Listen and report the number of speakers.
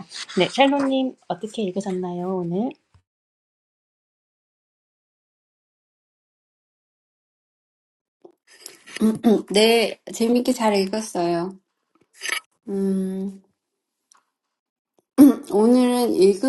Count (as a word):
two